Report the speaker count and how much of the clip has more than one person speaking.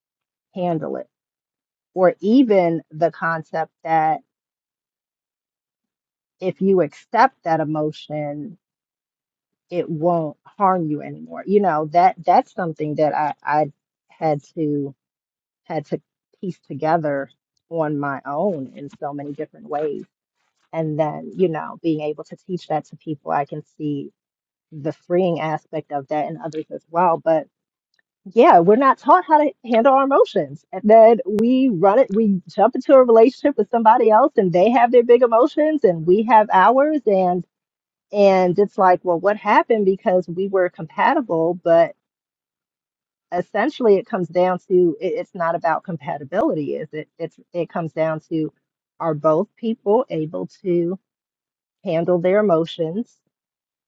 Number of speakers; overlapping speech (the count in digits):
1, no overlap